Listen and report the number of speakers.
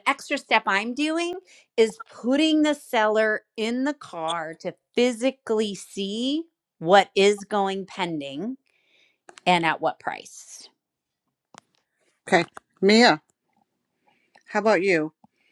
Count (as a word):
two